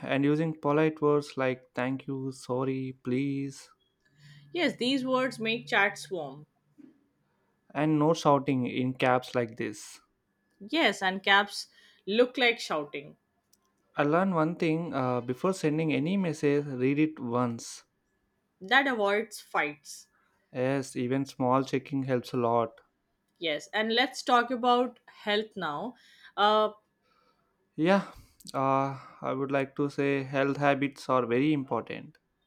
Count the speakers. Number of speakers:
two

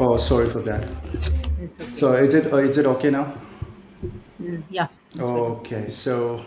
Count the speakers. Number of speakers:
two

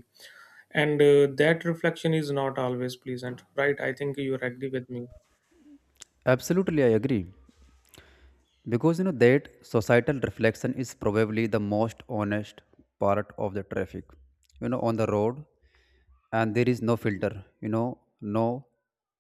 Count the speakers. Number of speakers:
two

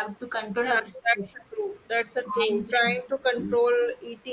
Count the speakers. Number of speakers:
two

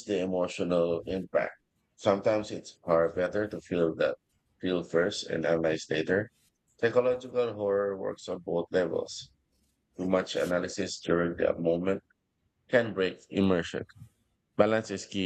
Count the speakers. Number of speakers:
one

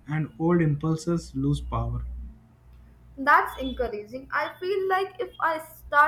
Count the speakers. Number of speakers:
two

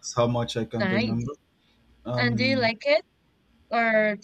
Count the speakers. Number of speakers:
two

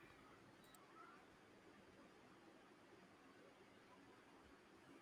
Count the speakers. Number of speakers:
zero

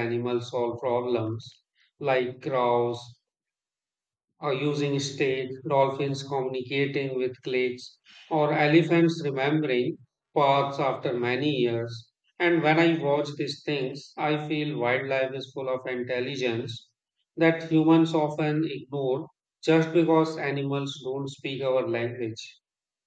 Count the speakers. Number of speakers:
one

